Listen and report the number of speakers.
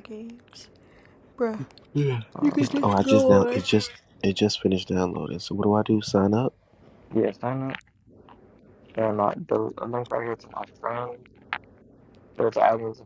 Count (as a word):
three